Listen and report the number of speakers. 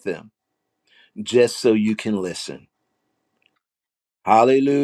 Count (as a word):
one